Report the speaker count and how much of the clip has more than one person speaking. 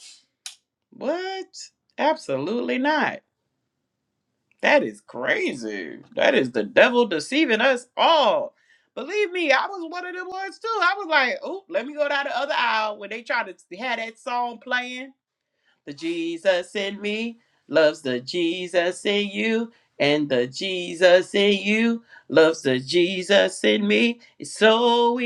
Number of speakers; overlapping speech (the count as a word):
one, no overlap